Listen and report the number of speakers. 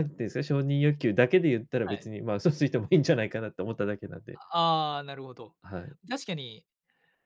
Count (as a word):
two